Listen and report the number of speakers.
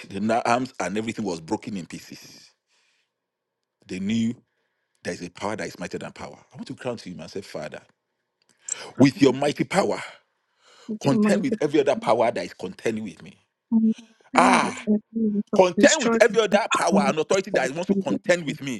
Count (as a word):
two